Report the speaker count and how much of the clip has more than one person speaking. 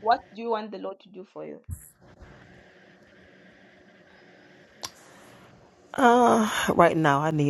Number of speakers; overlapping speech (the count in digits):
2, no overlap